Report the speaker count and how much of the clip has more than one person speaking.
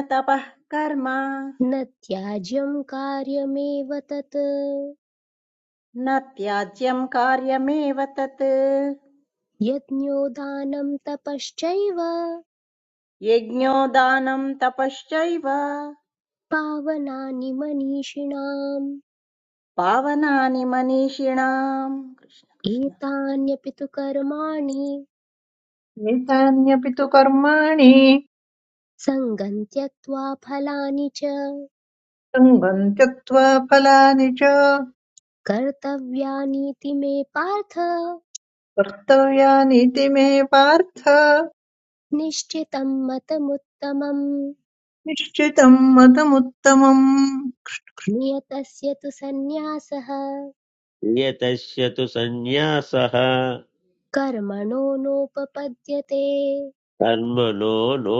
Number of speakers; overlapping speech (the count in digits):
4, under 1%